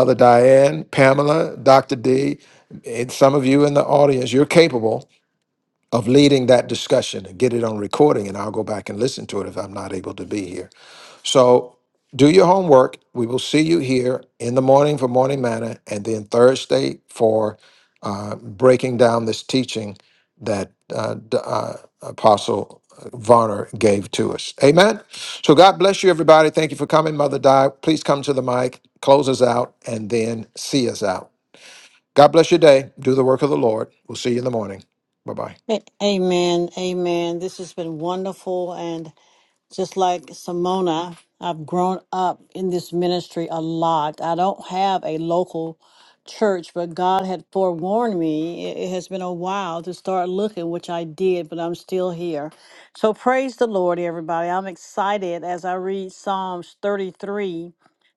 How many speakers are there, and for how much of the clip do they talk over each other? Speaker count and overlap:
2, no overlap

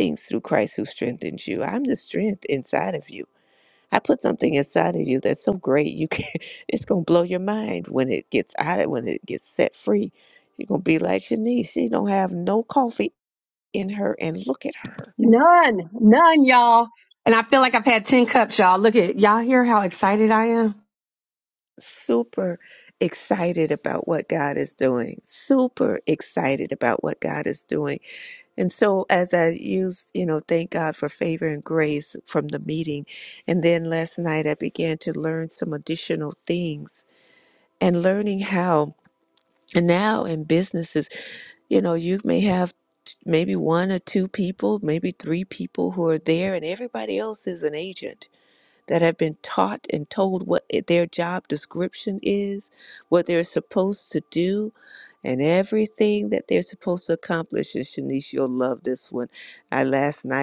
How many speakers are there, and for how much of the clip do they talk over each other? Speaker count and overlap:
2, no overlap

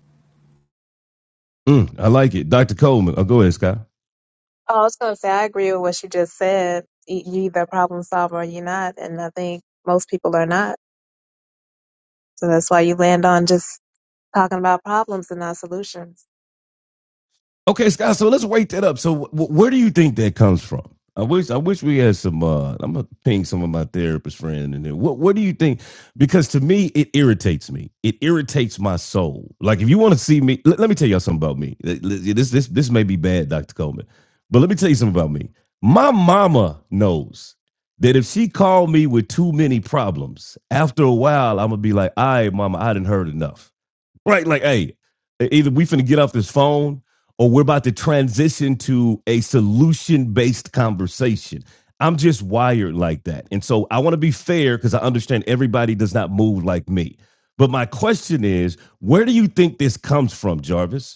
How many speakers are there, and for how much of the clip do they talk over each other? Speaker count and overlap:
2, no overlap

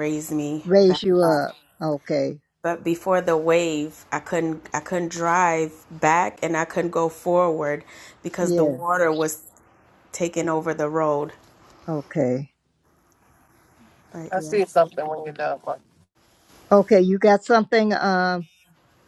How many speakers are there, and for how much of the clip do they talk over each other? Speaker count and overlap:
3, about 8%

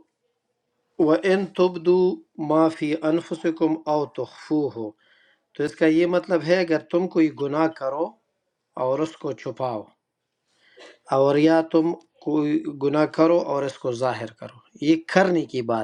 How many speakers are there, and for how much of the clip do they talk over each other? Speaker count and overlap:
1, no overlap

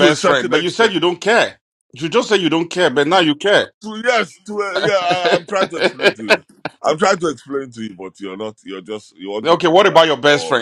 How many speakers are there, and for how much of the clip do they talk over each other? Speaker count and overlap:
2, about 20%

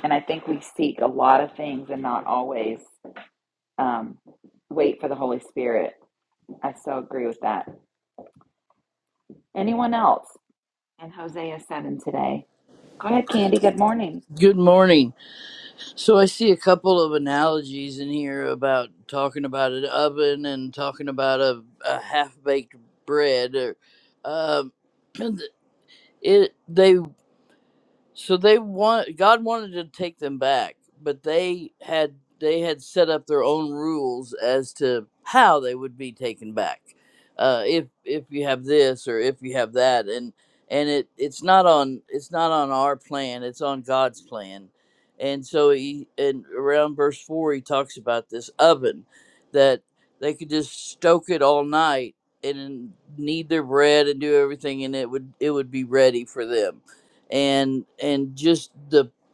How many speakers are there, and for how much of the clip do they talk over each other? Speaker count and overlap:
2, no overlap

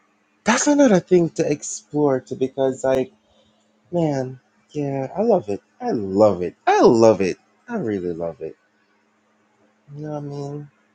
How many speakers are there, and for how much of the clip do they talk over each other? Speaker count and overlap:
1, no overlap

